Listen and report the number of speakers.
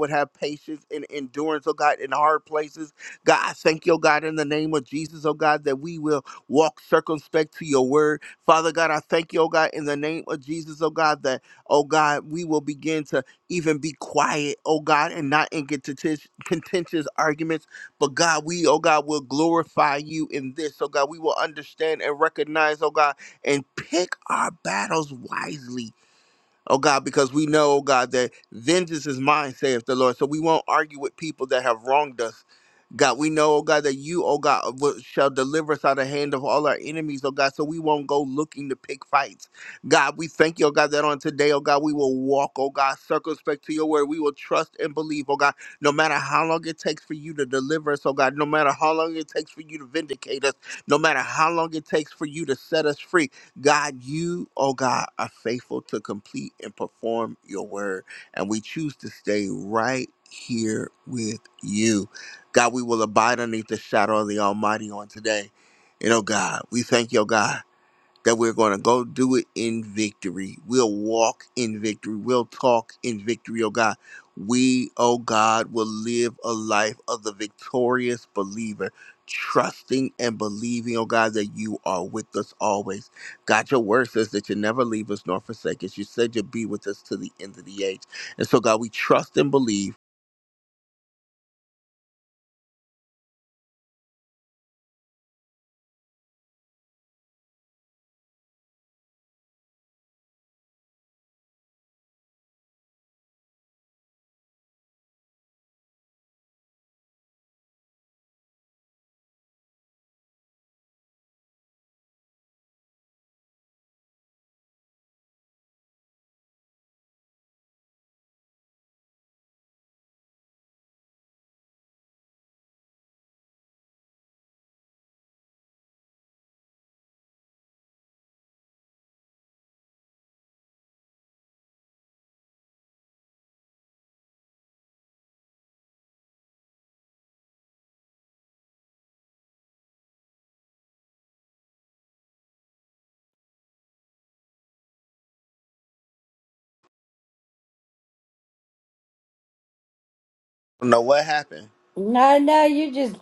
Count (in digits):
2